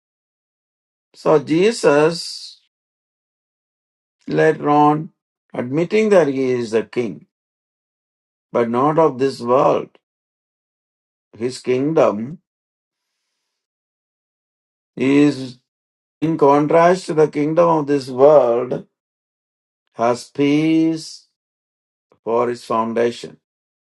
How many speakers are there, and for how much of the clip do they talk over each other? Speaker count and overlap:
1, no overlap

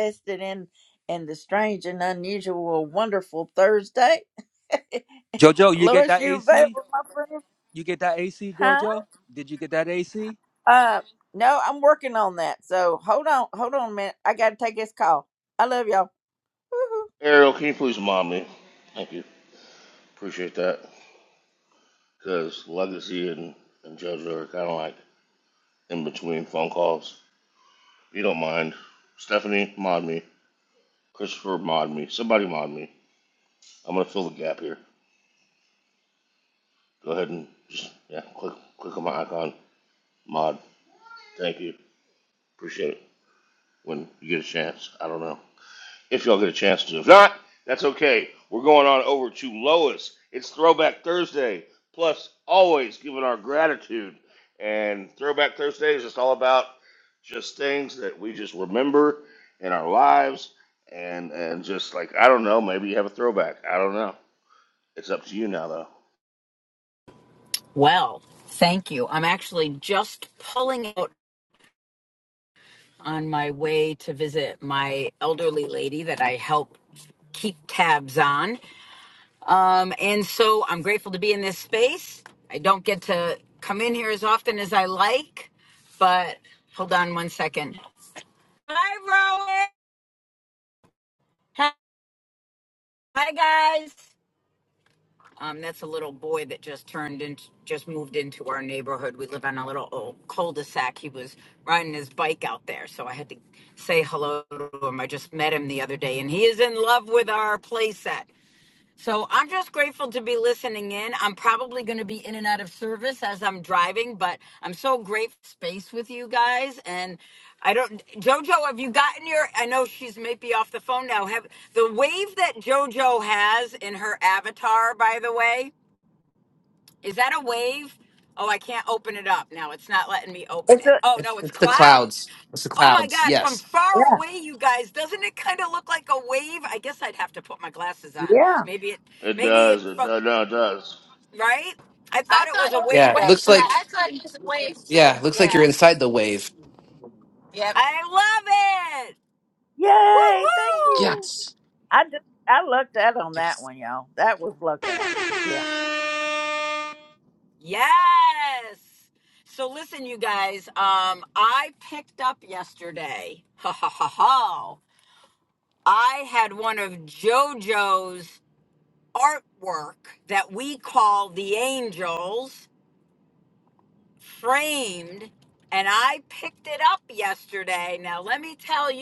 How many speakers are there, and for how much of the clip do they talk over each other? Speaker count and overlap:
6, about 4%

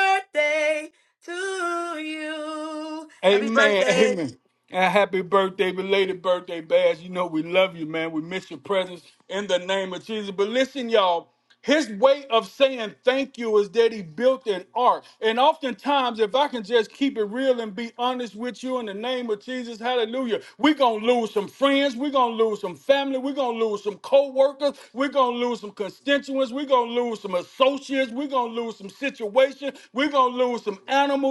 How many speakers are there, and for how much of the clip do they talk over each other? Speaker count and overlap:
2, about 3%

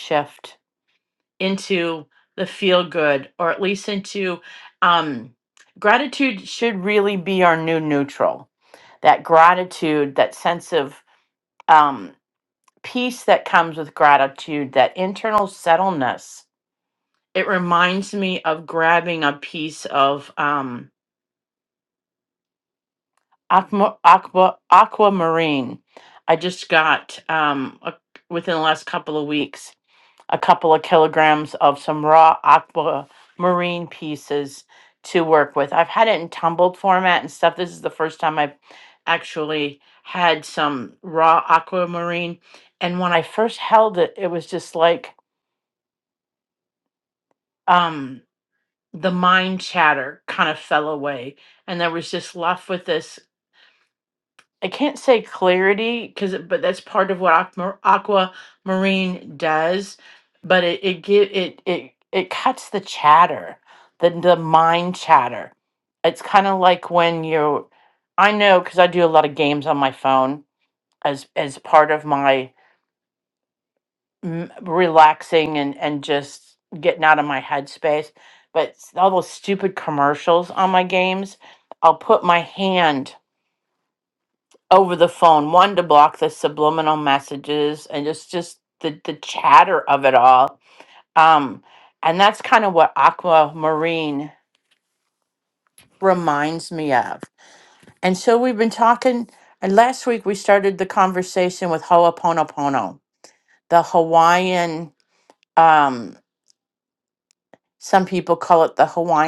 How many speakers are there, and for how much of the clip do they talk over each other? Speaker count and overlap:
1, no overlap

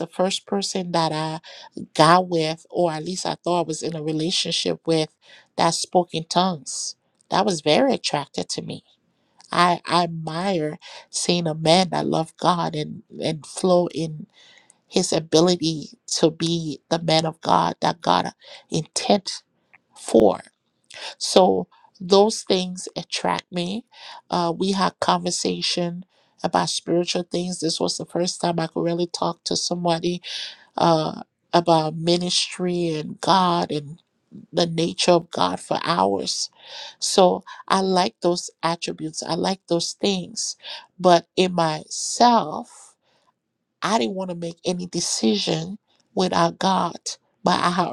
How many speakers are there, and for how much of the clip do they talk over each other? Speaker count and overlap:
1, no overlap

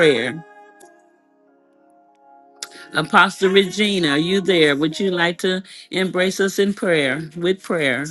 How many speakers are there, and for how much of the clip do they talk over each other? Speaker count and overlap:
1, no overlap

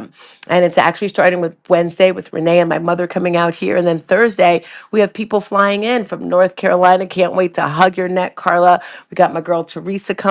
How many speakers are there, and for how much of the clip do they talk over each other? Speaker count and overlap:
1, no overlap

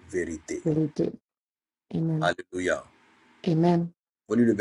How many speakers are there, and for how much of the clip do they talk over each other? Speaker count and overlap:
2, about 2%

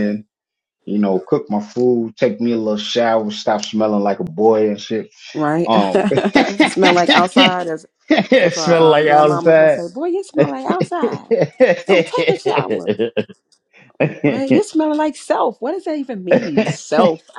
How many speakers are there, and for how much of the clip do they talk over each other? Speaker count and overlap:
2, about 8%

